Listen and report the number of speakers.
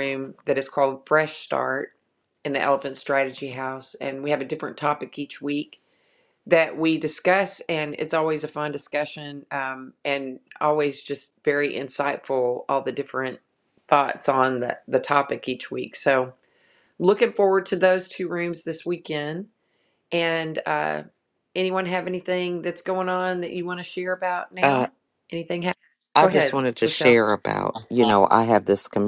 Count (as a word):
two